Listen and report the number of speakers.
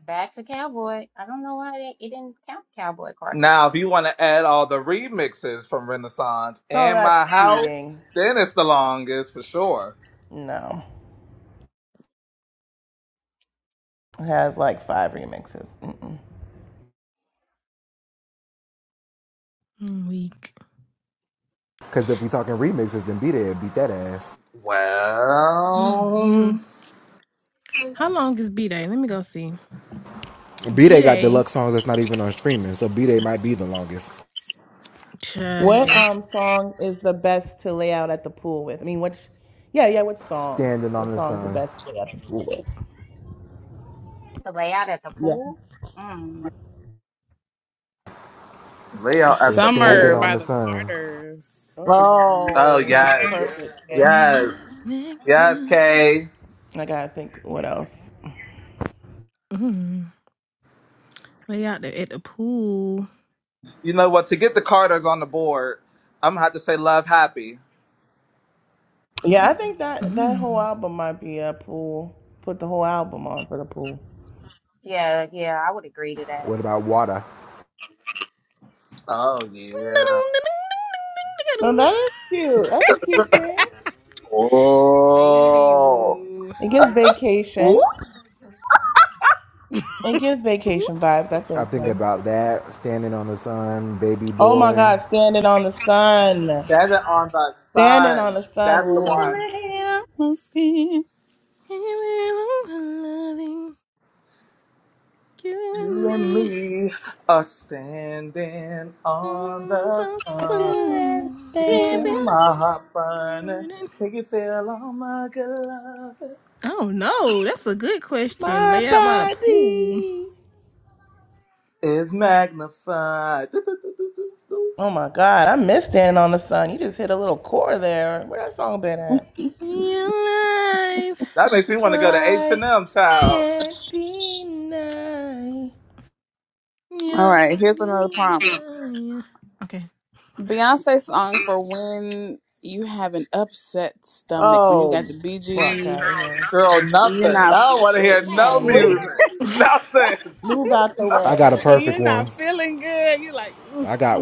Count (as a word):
six